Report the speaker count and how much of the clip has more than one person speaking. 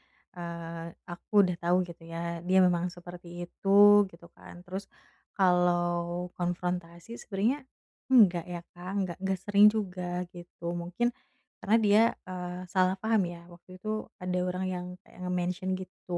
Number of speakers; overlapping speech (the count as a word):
one, no overlap